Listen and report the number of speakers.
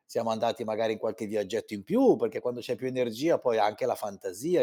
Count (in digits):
1